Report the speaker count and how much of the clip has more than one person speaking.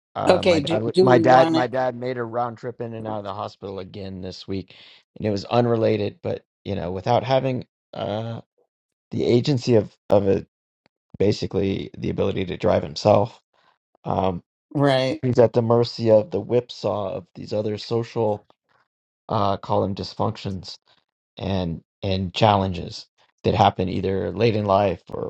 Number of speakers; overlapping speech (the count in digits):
2, about 6%